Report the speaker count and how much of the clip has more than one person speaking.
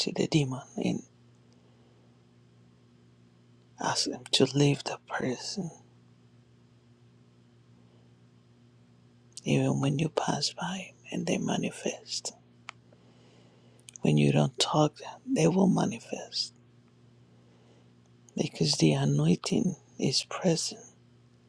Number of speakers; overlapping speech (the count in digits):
1, no overlap